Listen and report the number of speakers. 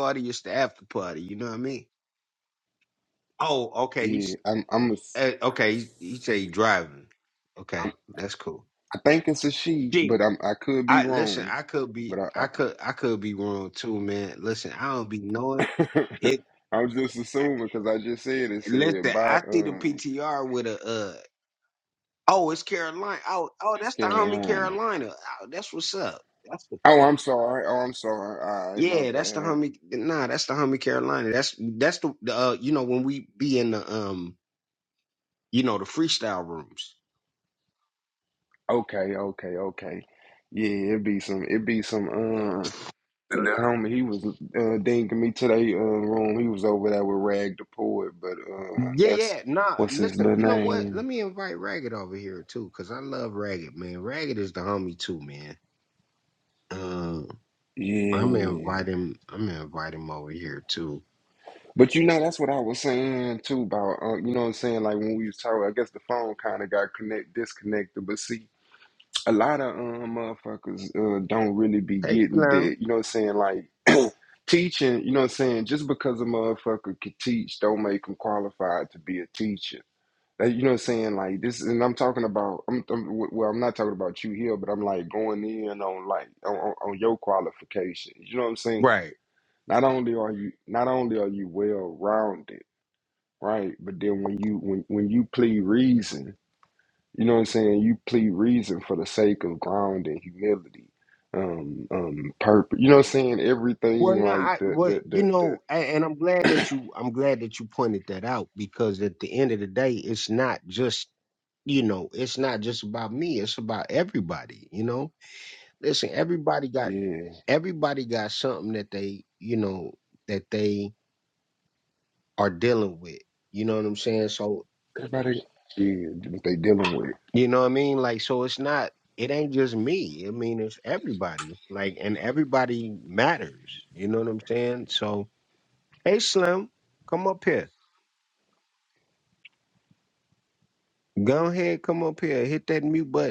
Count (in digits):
2